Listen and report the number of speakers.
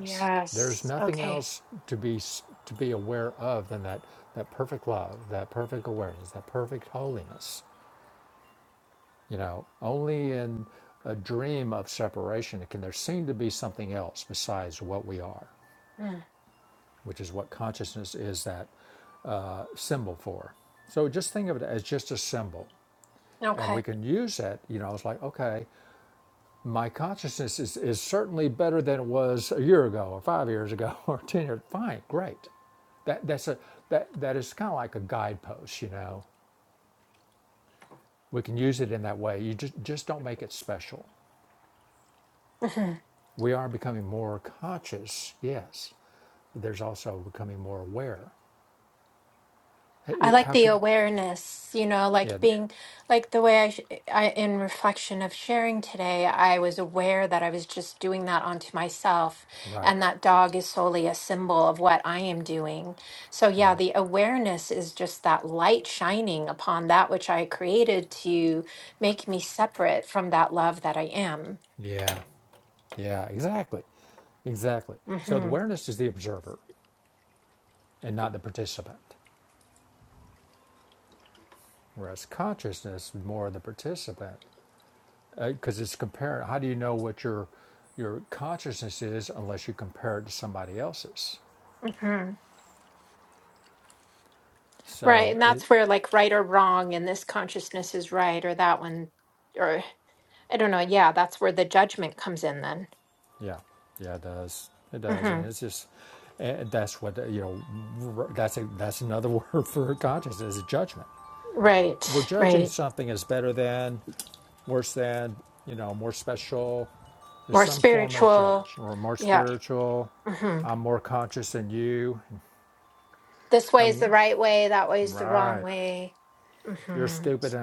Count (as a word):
two